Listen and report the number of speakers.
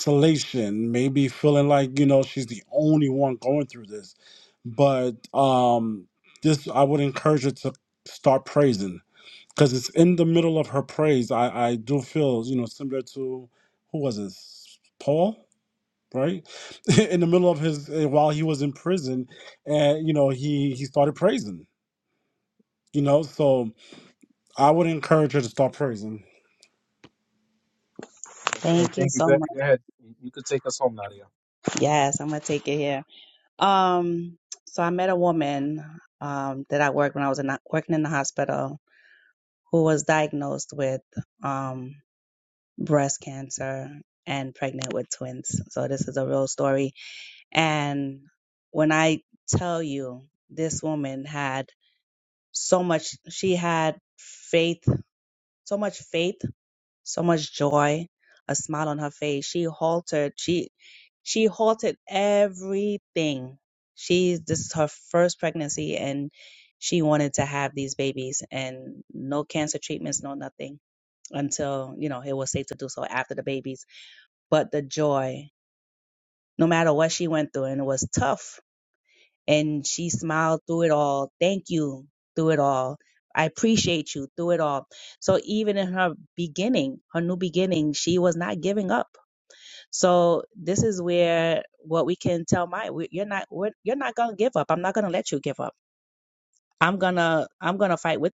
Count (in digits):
3